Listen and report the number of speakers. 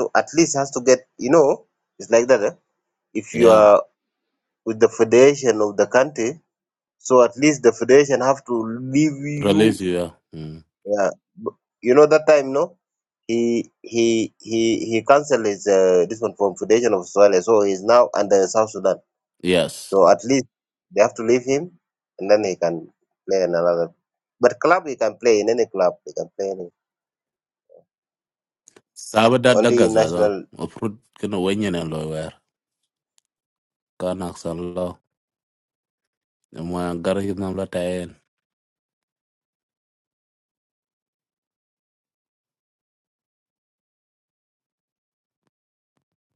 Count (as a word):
two